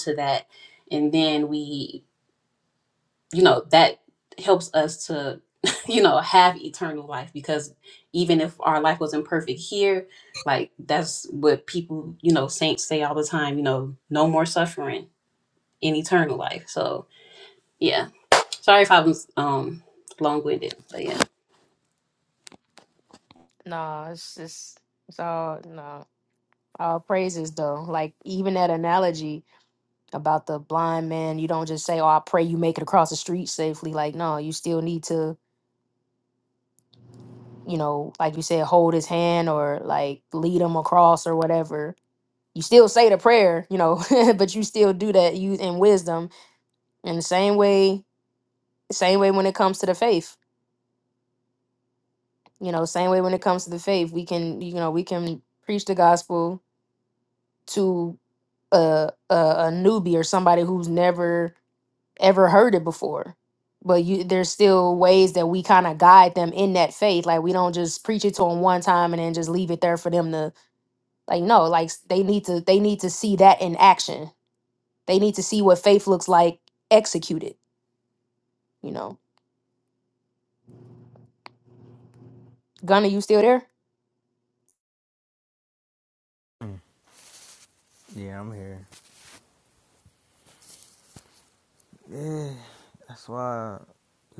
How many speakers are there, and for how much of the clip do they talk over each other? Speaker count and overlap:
3, no overlap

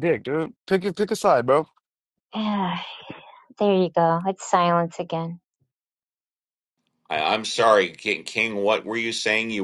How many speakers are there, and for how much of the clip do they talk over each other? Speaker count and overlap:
3, no overlap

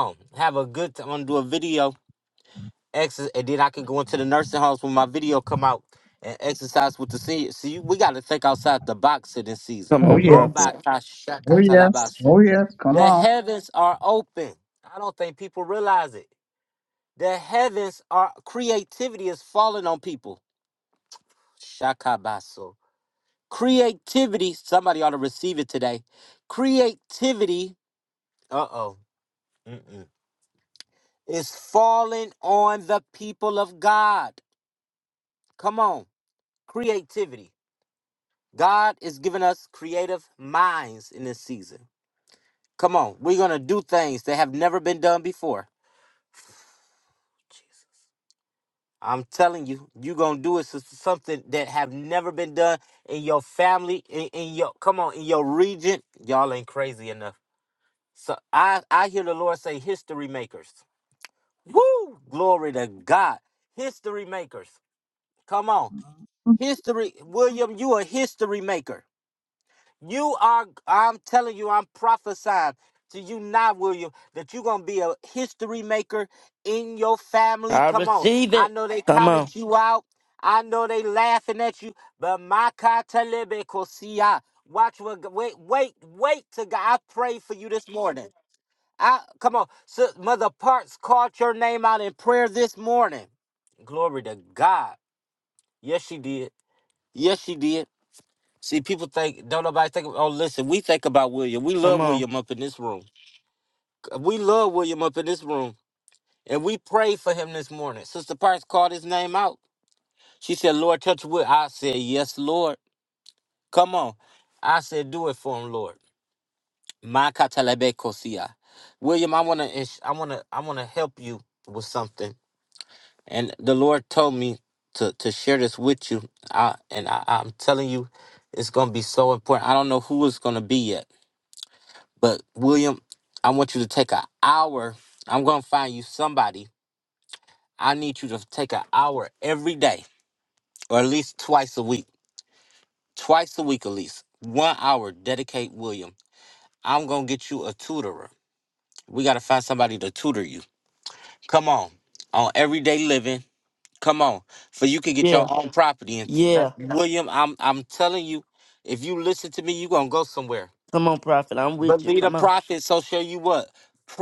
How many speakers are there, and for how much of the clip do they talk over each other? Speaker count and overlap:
3, about 2%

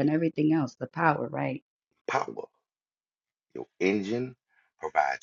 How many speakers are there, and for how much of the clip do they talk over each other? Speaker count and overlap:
2, no overlap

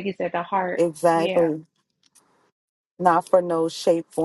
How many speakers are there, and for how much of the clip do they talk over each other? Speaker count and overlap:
2, about 10%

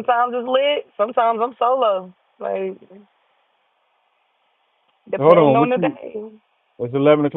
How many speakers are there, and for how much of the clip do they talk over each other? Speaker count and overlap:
2, about 10%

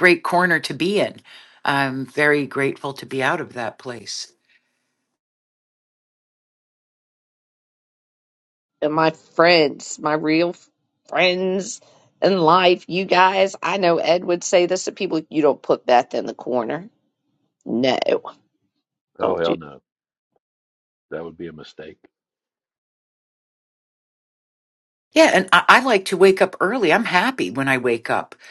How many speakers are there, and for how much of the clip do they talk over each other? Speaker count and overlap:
3, about 1%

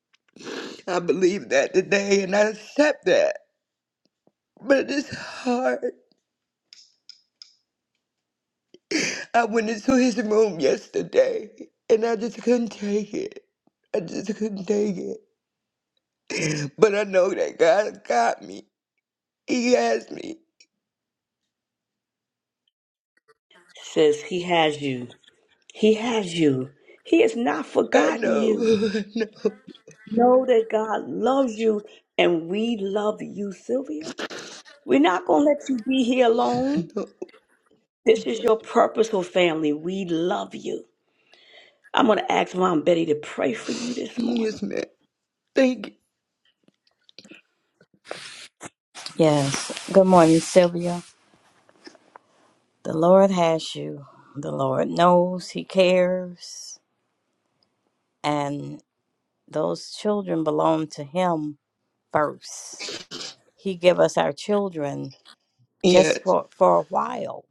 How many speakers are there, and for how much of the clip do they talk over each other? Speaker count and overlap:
3, about 2%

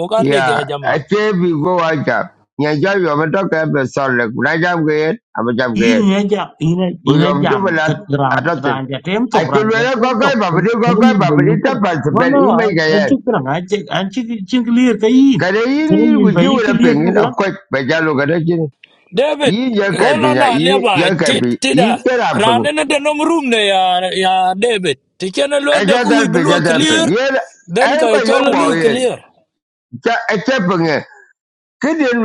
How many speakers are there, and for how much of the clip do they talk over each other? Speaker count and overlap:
3, about 39%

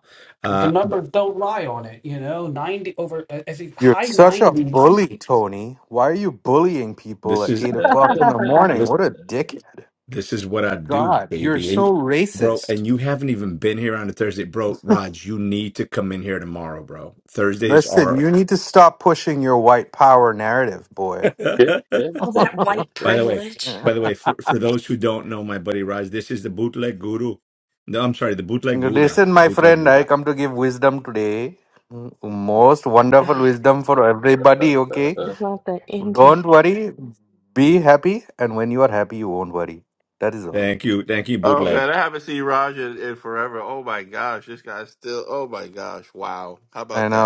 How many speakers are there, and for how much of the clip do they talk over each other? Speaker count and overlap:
5, about 15%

